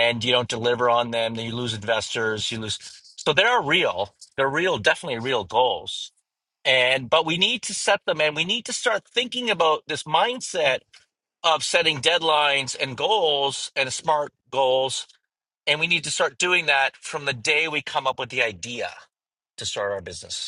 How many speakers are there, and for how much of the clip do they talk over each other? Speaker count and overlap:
one, no overlap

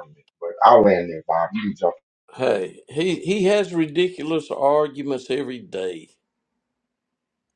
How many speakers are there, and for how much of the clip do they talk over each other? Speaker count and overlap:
two, no overlap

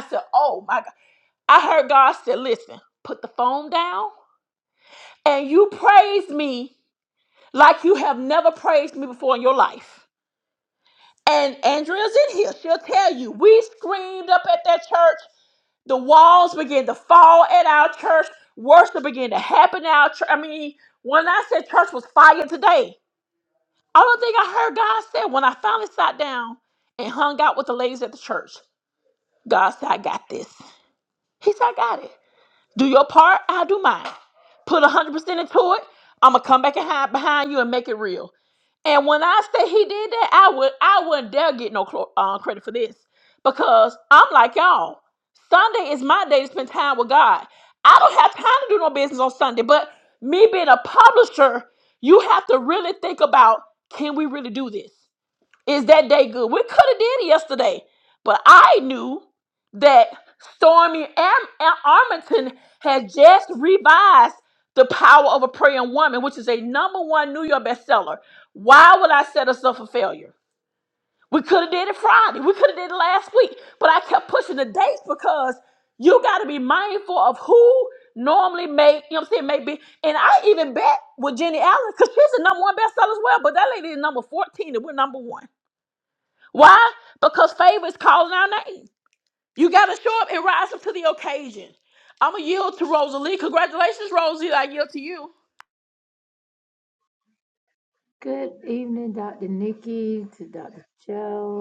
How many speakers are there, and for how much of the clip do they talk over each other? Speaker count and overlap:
two, no overlap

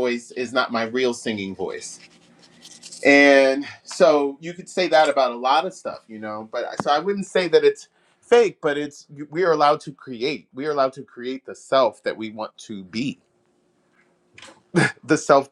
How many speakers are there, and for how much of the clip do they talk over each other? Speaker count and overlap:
one, no overlap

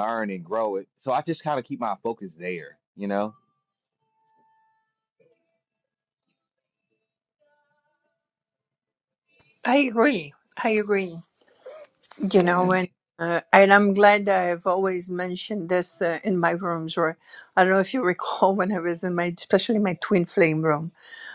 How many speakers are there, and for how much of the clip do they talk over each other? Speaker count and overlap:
two, about 2%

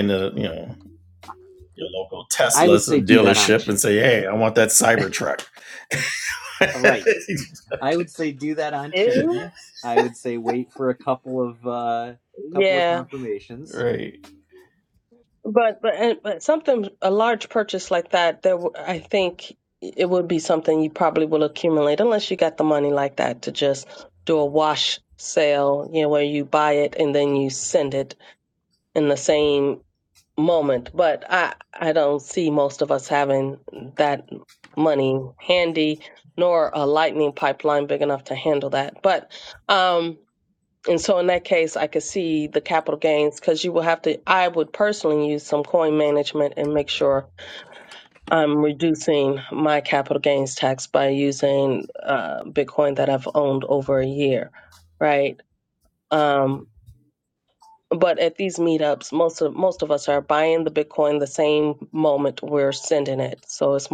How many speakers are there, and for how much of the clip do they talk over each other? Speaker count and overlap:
three, about 4%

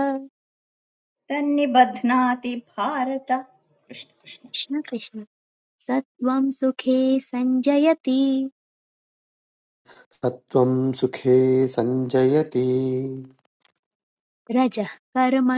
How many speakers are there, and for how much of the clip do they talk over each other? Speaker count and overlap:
three, no overlap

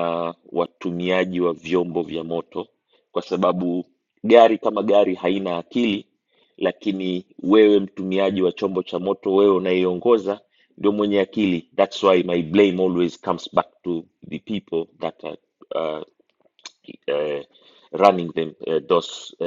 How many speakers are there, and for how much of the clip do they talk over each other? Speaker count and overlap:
one, no overlap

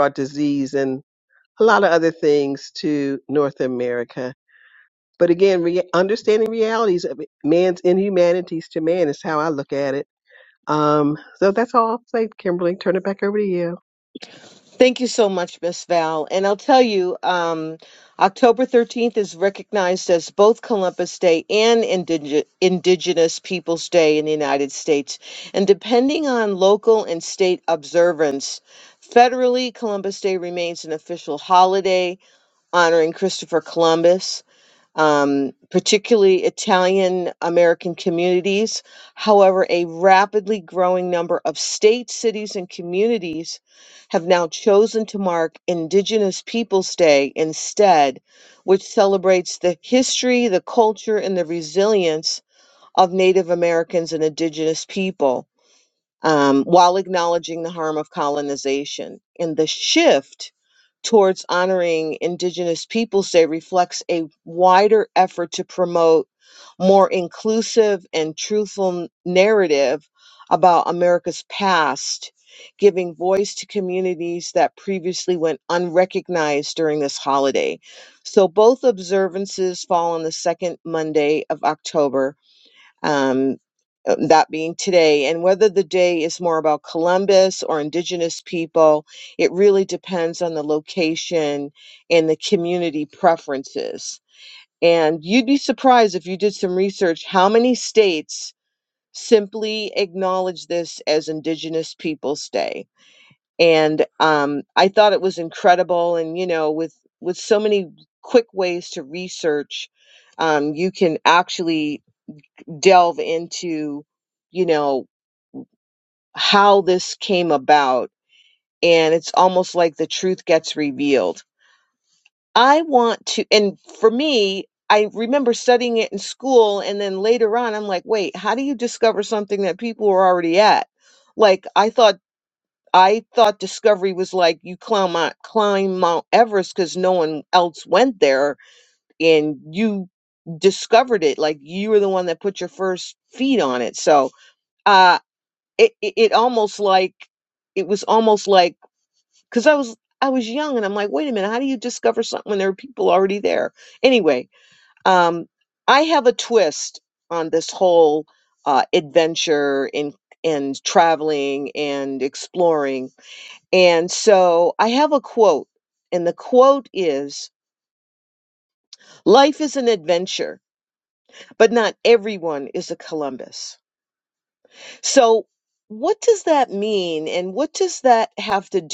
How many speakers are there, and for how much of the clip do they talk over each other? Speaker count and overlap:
two, no overlap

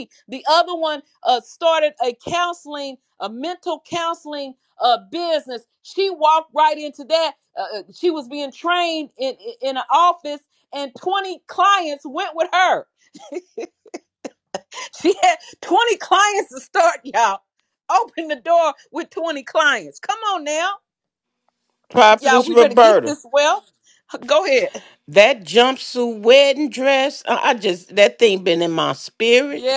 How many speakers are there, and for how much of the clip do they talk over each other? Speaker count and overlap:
two, about 4%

